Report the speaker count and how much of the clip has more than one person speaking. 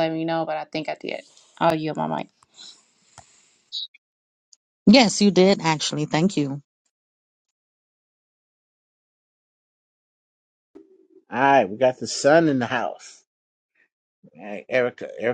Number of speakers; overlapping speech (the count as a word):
three, no overlap